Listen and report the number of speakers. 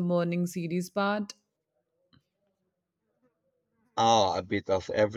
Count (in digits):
2